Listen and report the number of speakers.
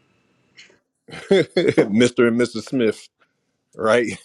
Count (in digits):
1